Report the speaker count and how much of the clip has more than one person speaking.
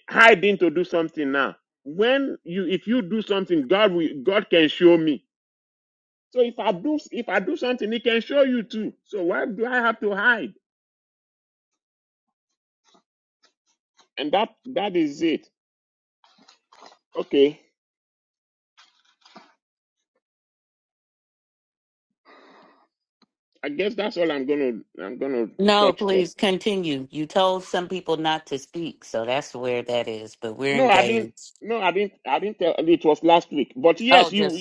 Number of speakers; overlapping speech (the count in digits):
2, about 4%